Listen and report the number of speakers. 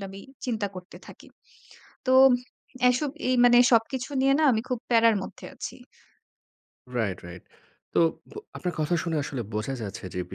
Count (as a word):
two